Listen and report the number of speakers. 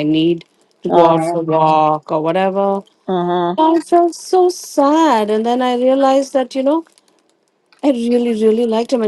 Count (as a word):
two